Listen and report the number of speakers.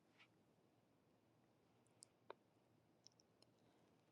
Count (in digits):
0